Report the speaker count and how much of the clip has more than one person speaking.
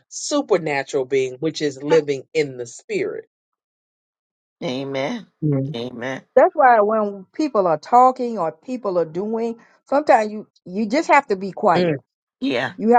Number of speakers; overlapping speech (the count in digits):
3, about 2%